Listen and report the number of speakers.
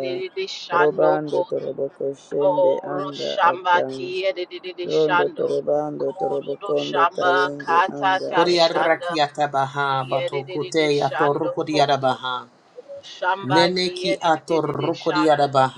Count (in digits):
3